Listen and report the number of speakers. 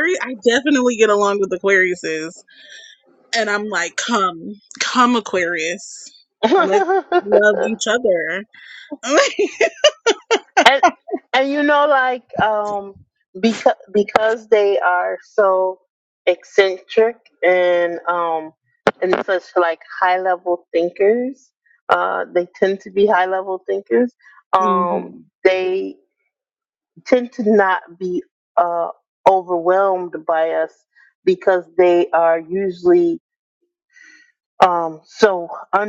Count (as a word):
two